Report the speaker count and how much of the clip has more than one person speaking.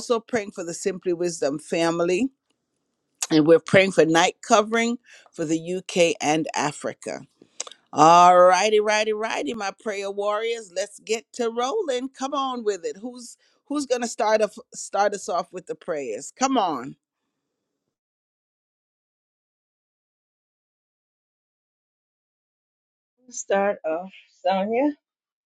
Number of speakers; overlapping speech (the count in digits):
2, no overlap